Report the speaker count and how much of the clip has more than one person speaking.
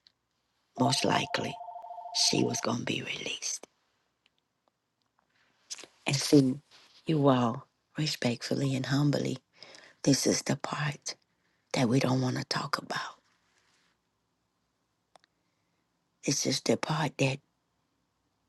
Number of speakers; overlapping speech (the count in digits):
1, no overlap